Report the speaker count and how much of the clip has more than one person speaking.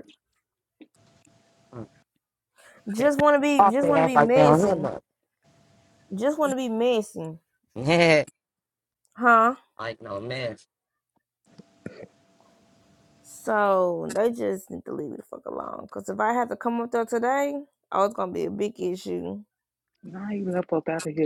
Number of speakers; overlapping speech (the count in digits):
3, about 6%